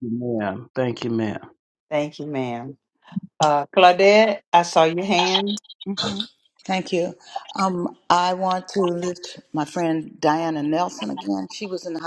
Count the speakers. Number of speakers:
3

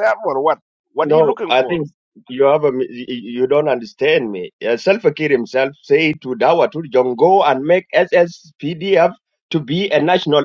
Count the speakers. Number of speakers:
2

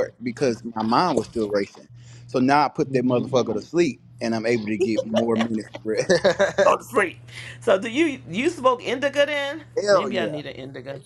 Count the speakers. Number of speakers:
2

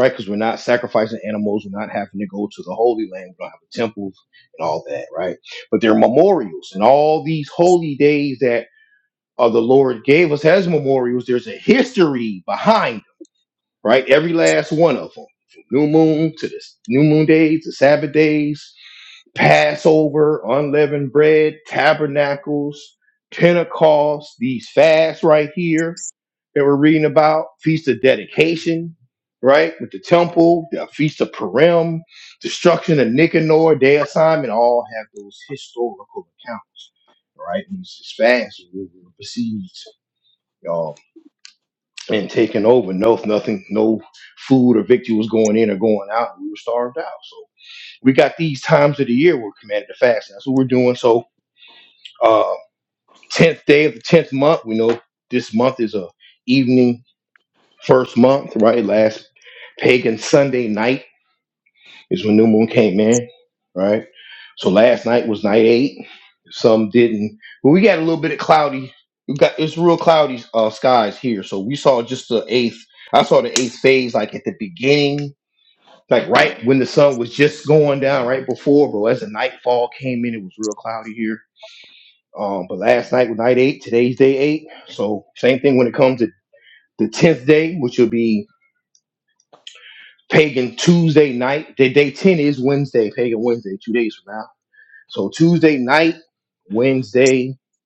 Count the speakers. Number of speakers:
1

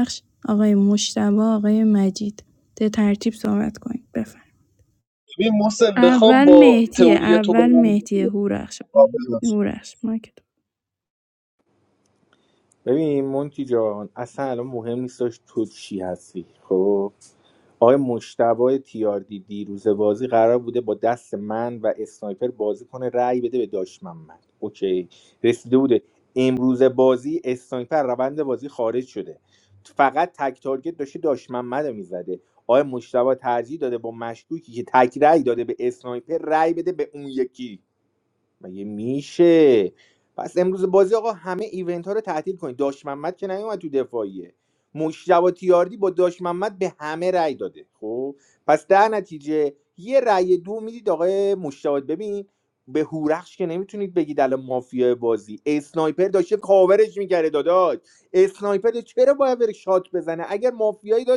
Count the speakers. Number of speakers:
3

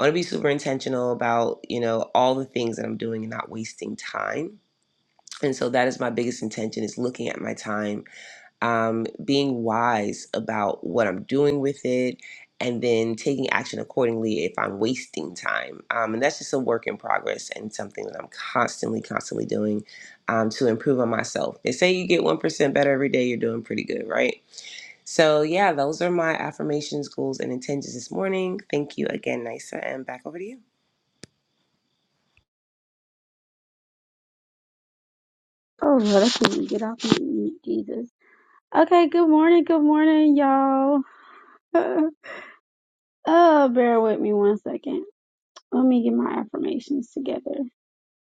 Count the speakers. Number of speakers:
2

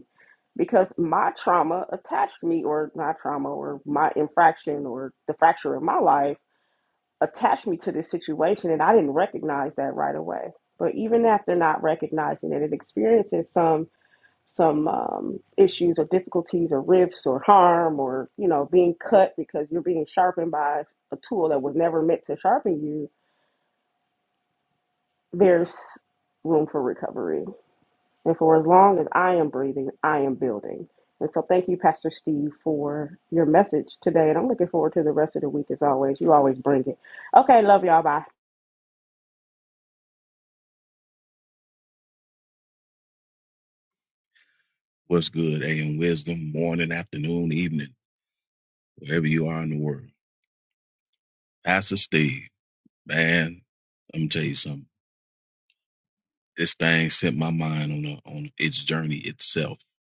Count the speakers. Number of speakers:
2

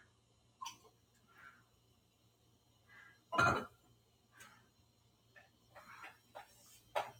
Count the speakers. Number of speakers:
0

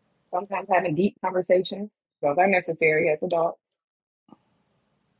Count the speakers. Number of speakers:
1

